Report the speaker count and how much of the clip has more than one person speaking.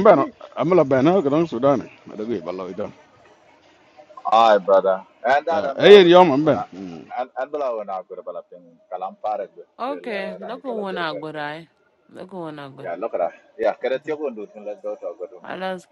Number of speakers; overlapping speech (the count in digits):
3, about 16%